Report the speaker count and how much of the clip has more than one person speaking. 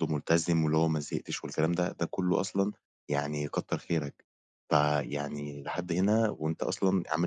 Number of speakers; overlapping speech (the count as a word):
one, no overlap